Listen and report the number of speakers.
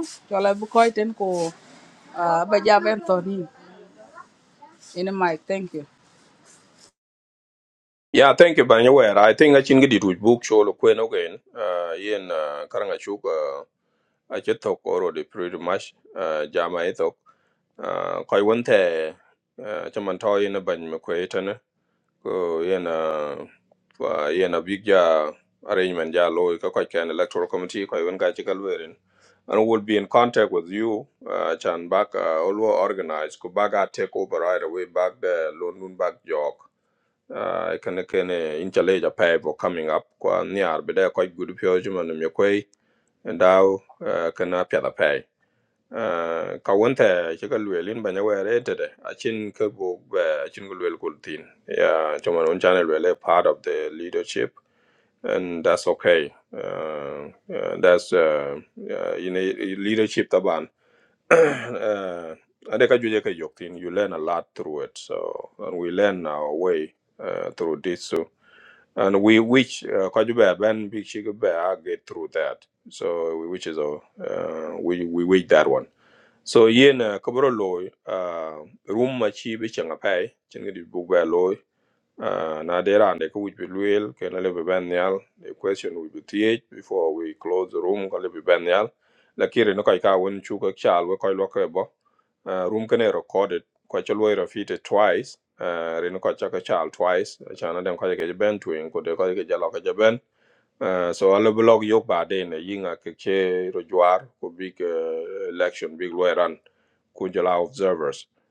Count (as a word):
two